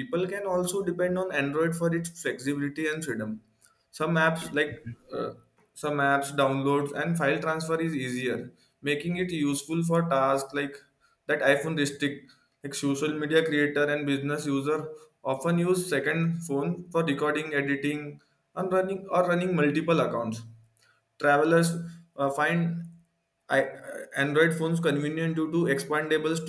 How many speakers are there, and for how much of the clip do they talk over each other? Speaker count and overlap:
1, no overlap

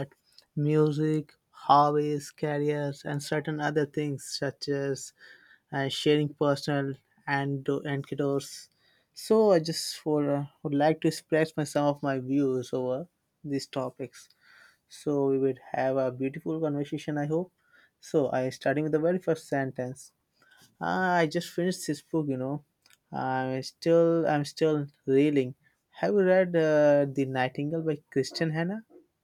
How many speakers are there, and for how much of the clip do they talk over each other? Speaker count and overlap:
1, no overlap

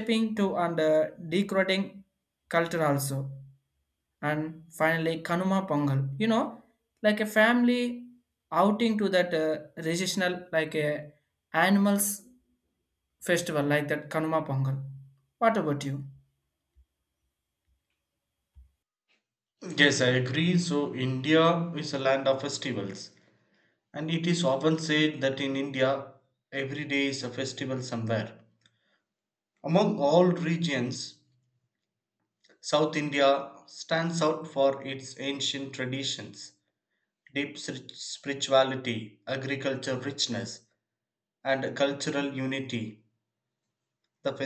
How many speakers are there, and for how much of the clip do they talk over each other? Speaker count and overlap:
2, no overlap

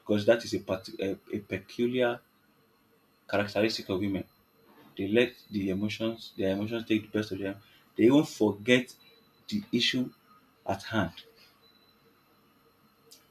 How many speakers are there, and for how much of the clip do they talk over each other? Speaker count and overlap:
1, no overlap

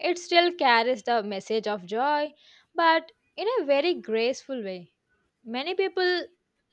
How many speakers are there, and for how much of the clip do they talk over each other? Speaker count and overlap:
1, no overlap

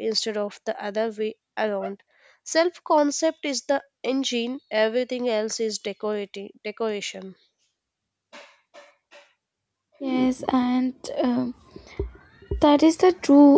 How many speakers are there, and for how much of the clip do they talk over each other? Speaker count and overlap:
2, no overlap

